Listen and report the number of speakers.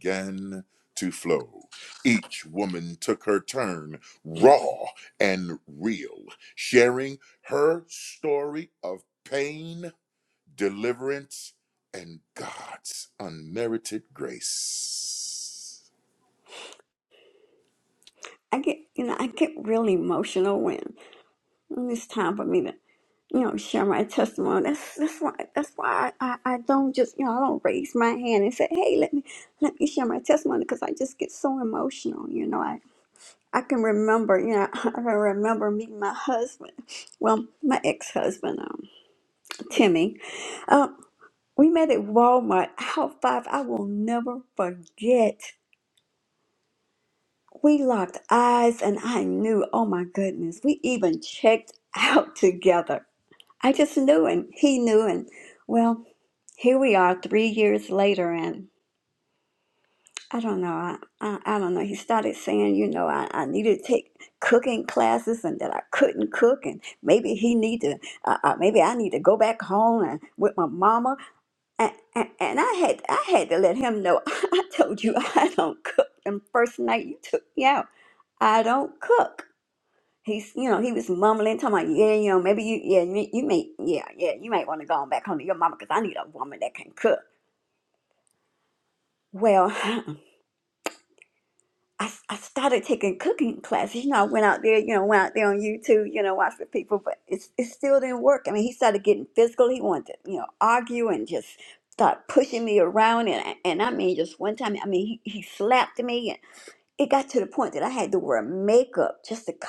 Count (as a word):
two